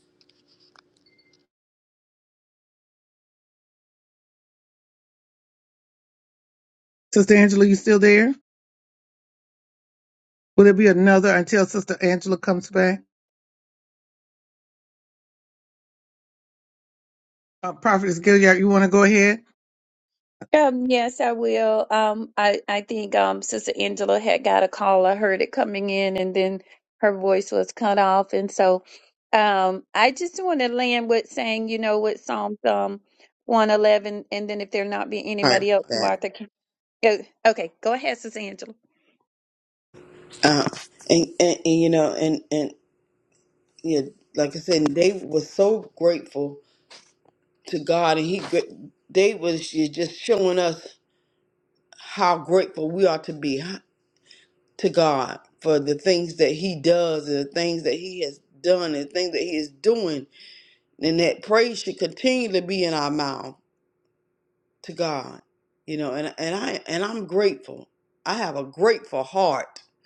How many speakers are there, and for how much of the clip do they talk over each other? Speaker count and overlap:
3, about 1%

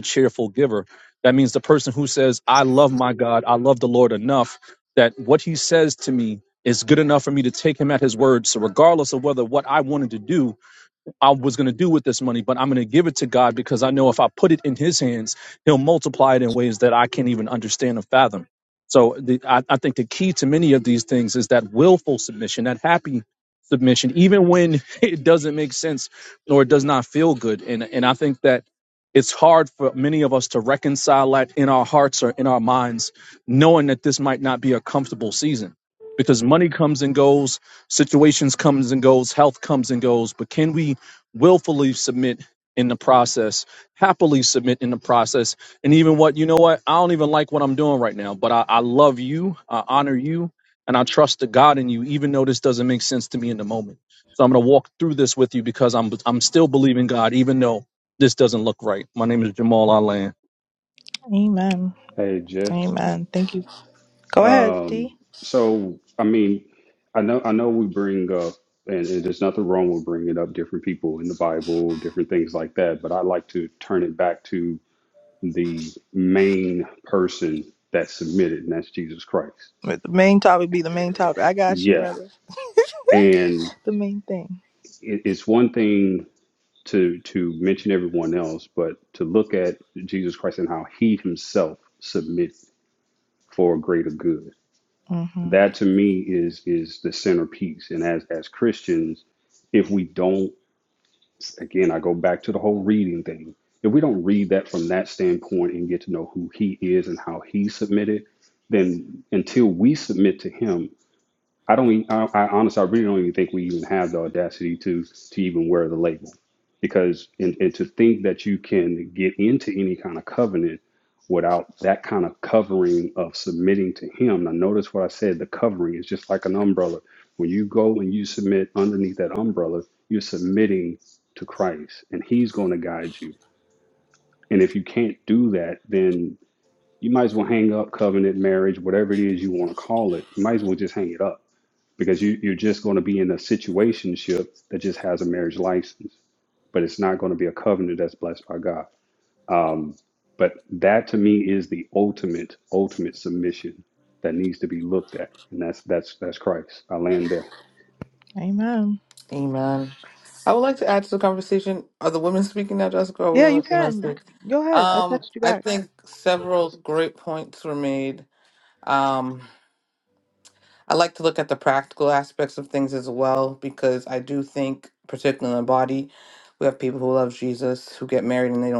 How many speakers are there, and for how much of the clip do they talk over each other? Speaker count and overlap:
4, about 2%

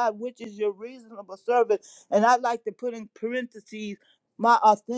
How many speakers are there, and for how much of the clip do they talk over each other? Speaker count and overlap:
1, no overlap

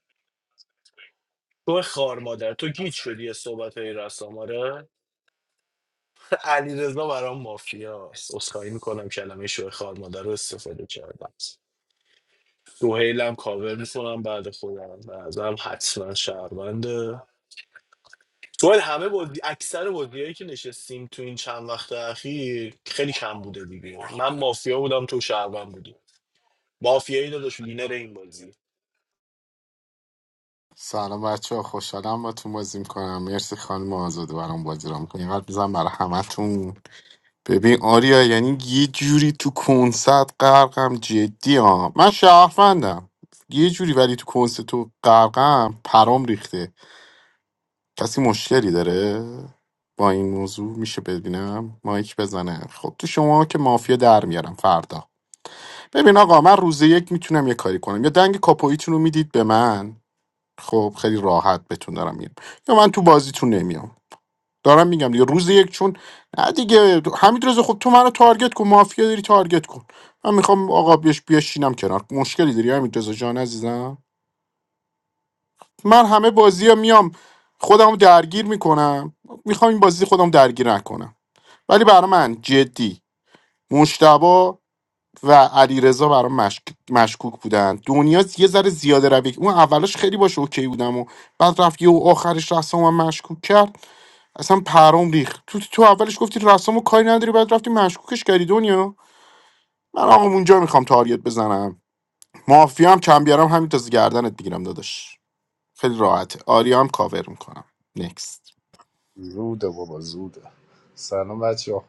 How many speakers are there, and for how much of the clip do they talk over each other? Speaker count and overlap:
3, no overlap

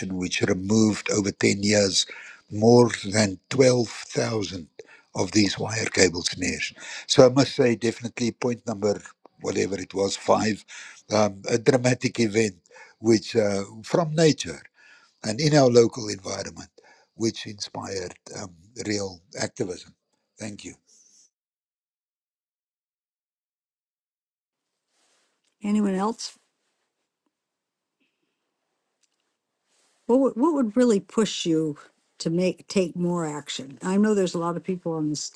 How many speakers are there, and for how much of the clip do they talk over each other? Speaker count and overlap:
2, no overlap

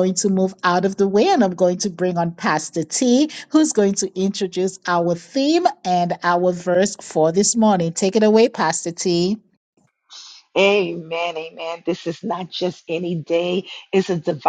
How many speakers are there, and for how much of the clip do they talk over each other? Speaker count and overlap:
2, no overlap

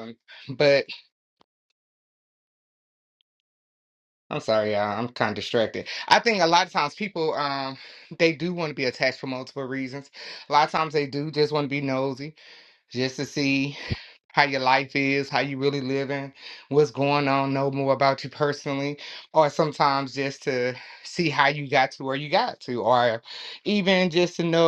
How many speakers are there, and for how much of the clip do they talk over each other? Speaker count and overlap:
1, no overlap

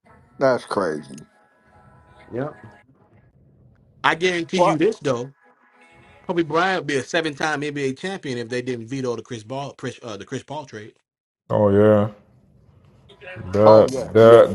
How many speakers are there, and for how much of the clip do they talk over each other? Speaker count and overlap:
3, about 8%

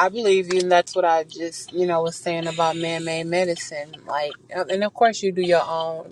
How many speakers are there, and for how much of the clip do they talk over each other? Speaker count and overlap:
1, no overlap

